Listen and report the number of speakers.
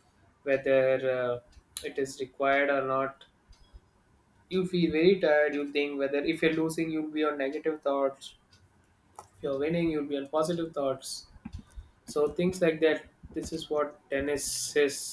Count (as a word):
one